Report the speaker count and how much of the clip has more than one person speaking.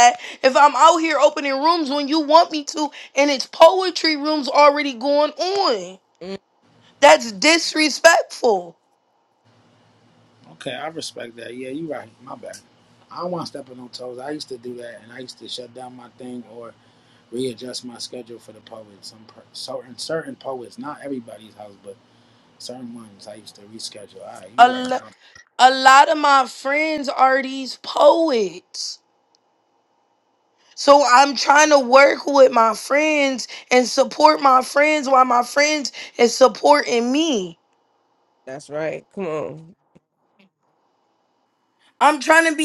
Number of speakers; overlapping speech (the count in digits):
3, about 1%